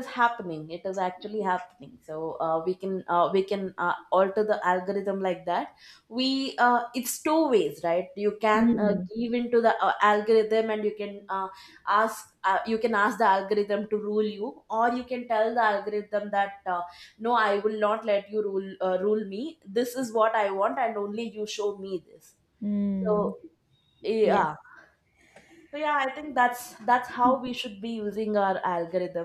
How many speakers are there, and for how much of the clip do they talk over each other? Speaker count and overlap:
two, about 4%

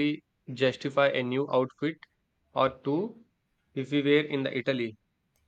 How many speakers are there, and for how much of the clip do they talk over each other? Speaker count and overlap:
one, no overlap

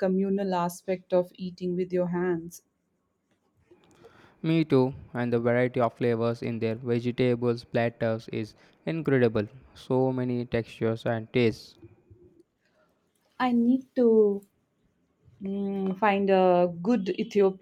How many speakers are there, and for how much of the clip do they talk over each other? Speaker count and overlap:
two, no overlap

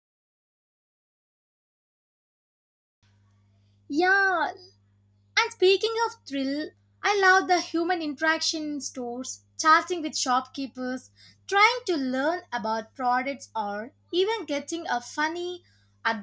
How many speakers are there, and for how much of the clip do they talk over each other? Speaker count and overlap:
one, no overlap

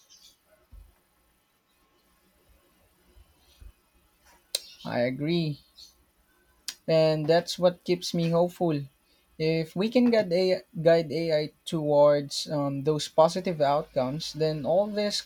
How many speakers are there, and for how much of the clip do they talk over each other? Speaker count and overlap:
one, no overlap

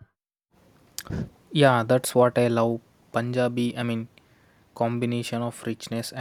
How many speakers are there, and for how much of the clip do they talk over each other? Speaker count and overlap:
one, no overlap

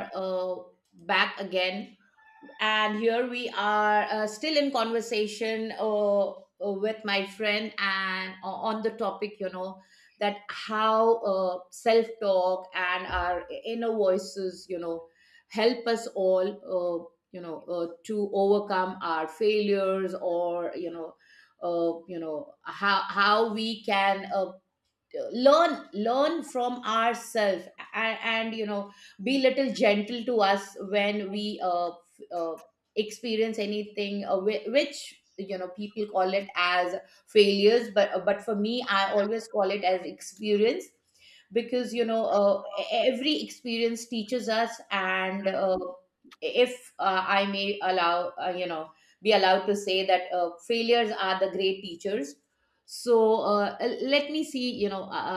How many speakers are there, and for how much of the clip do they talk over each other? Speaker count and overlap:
one, no overlap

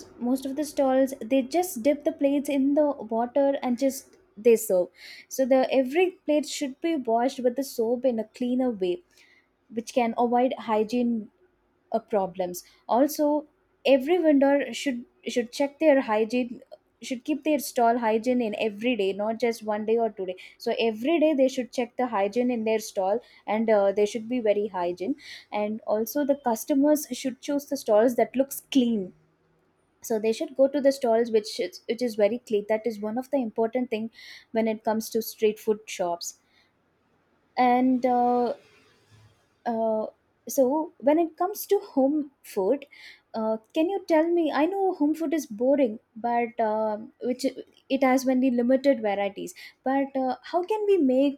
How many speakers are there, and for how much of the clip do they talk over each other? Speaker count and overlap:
one, no overlap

